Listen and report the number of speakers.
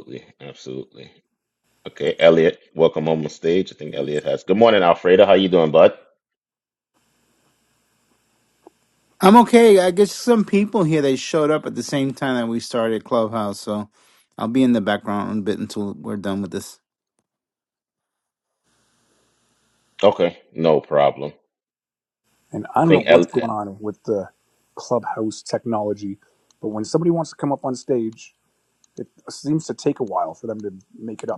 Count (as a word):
three